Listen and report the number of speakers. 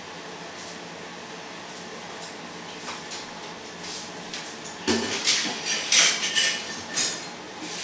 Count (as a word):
zero